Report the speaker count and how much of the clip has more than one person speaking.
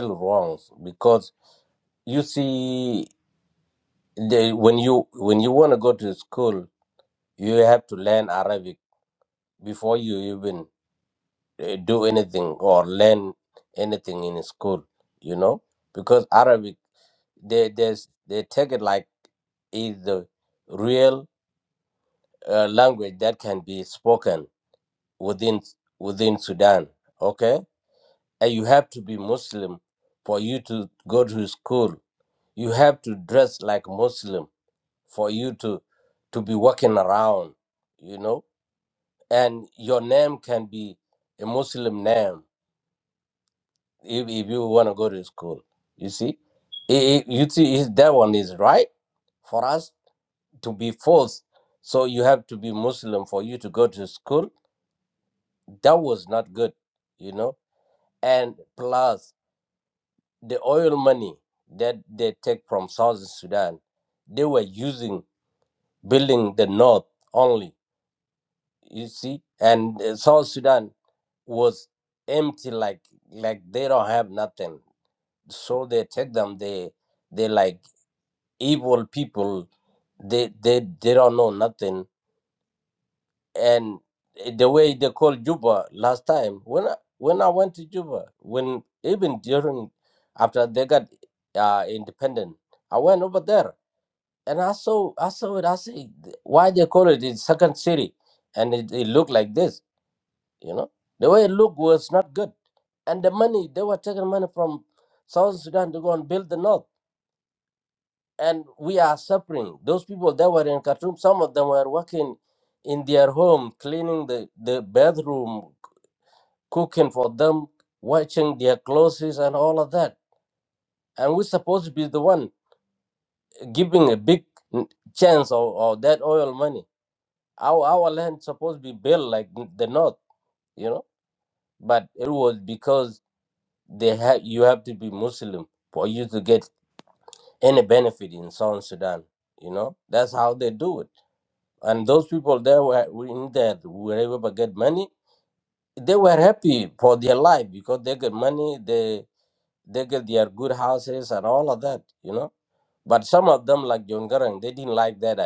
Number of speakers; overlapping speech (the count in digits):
1, no overlap